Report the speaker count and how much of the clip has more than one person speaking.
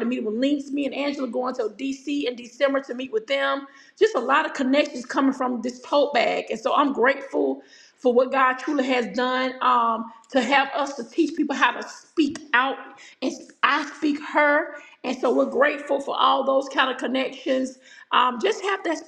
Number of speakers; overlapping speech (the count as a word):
one, no overlap